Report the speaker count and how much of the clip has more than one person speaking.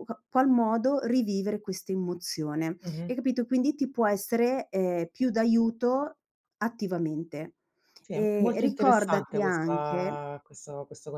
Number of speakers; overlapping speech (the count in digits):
2, about 18%